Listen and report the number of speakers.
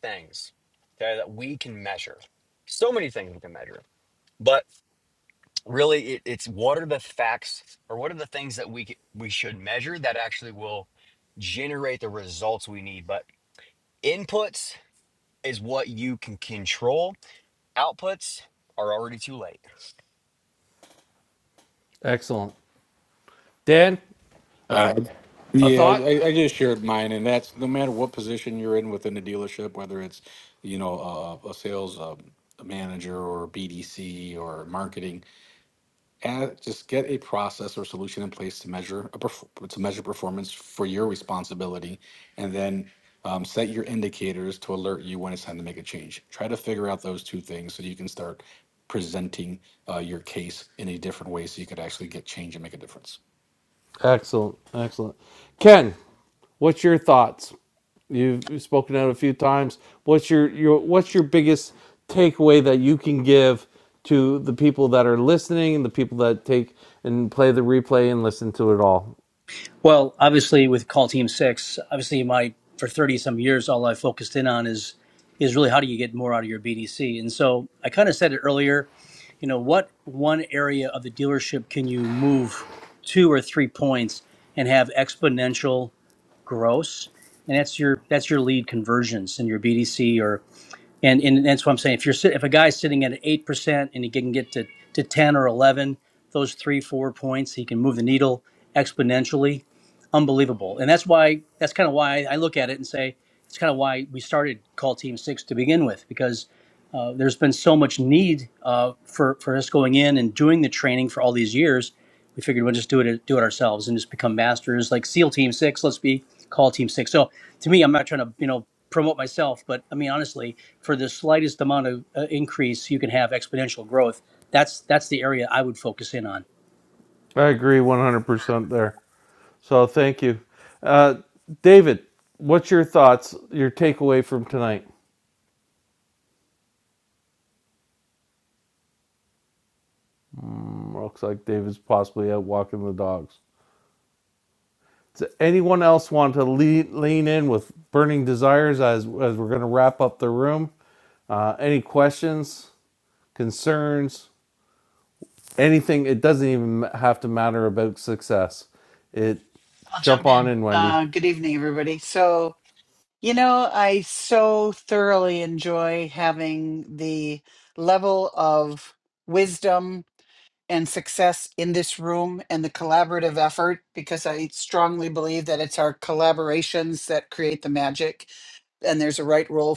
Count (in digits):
5